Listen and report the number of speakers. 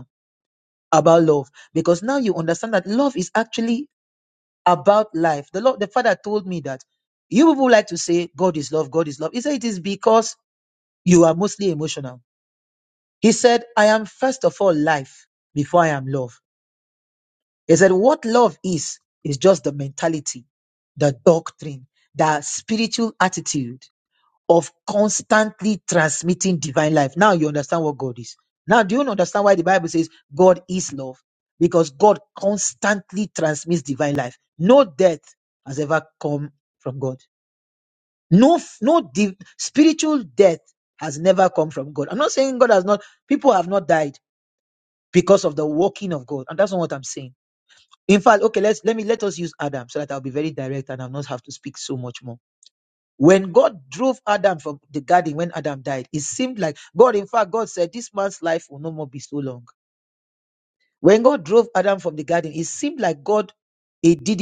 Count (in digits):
1